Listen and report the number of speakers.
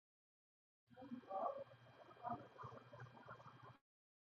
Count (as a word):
zero